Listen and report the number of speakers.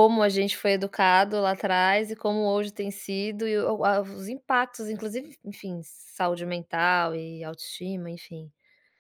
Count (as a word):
one